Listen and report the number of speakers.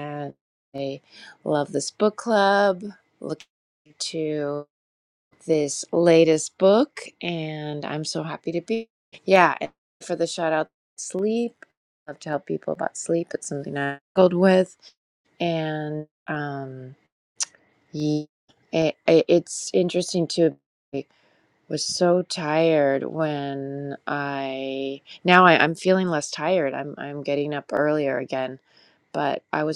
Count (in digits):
1